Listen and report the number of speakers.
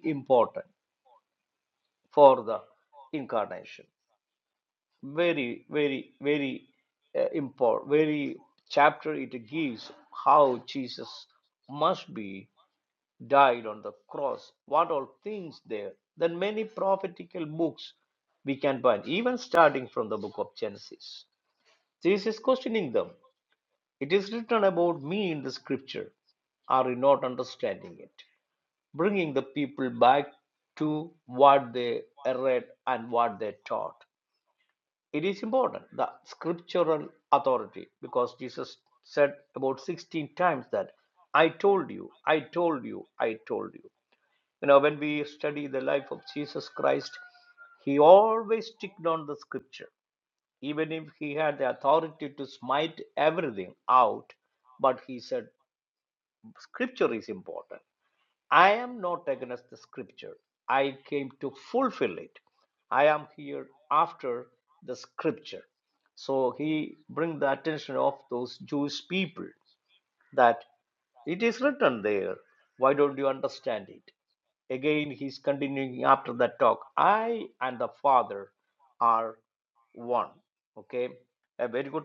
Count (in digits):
1